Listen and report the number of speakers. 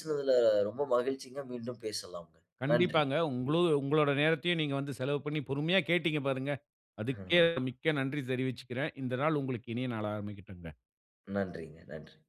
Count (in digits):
2